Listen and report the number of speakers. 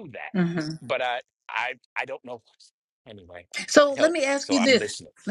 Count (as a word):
two